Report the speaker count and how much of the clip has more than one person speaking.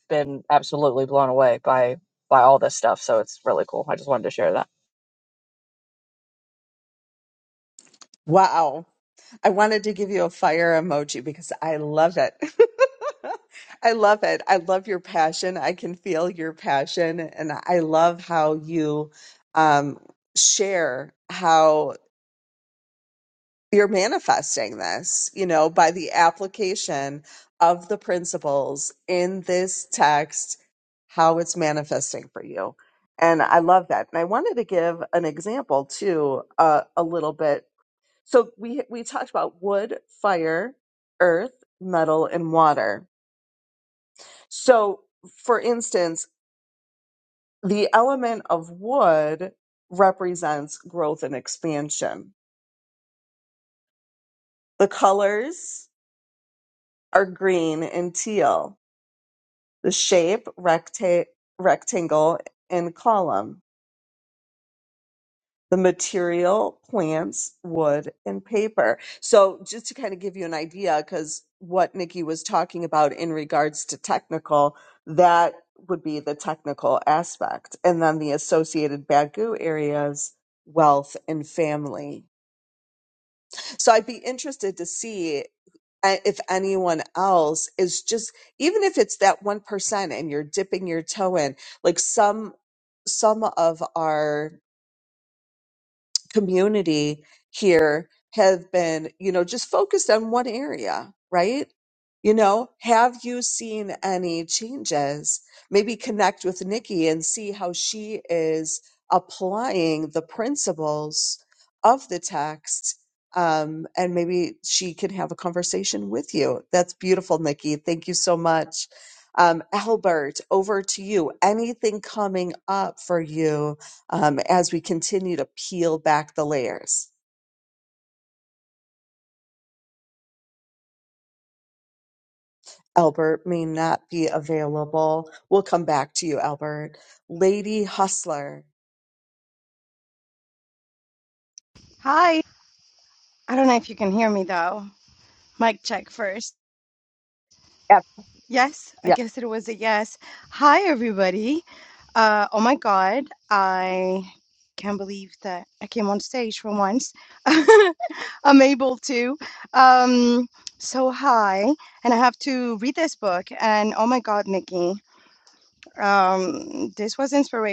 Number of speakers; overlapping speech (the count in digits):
3, under 1%